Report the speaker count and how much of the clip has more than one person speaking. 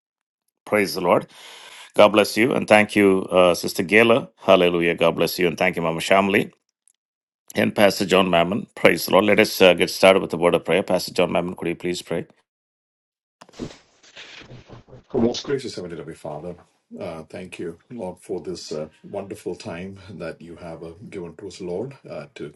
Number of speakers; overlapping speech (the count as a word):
two, no overlap